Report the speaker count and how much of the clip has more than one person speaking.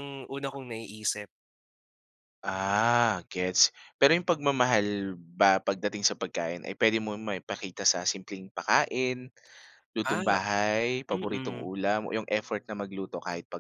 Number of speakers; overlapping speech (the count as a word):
two, about 6%